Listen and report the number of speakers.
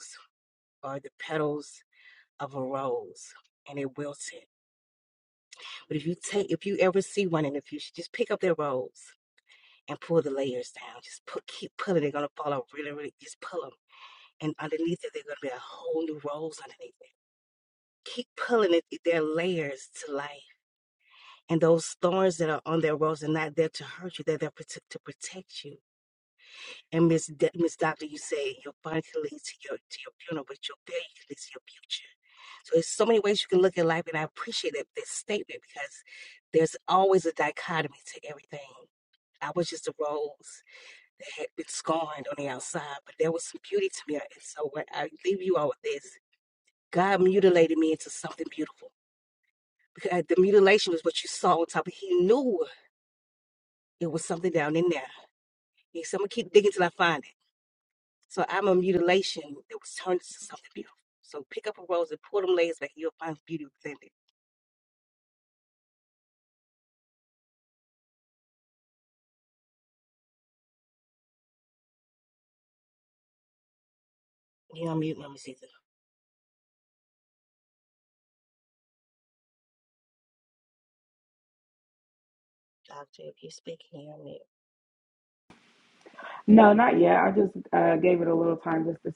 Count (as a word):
two